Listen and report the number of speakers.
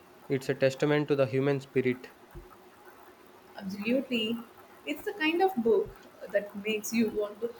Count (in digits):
2